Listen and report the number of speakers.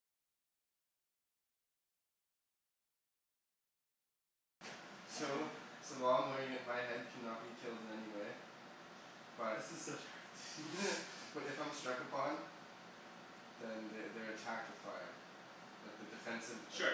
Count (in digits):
2